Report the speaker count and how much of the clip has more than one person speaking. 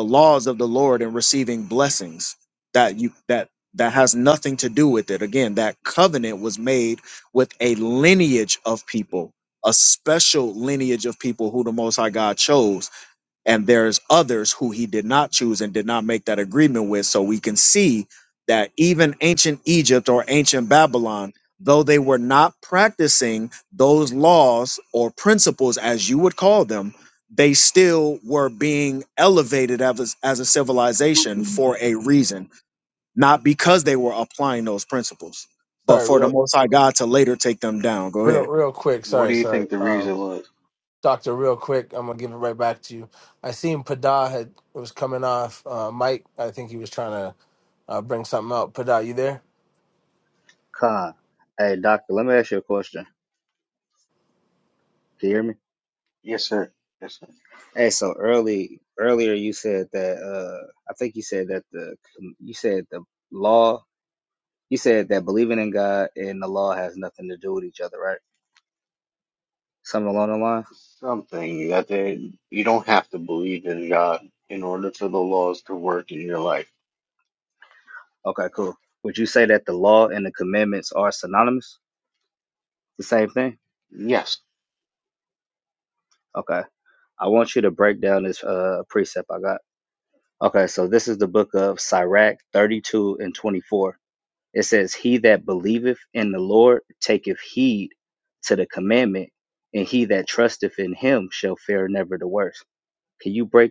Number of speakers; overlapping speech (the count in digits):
4, about 2%